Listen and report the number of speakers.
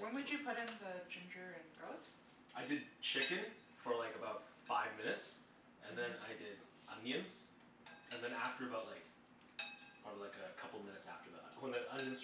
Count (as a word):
two